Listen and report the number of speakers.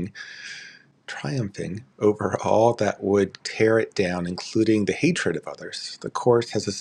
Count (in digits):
1